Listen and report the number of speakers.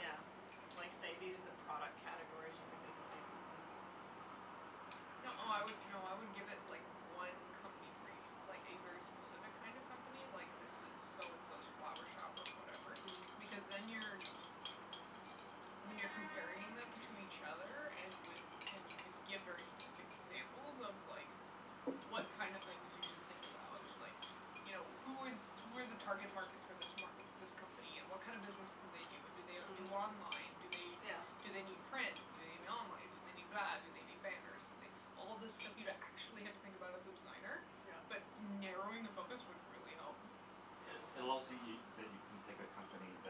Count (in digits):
3